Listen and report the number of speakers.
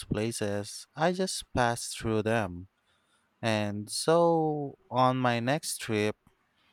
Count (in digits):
1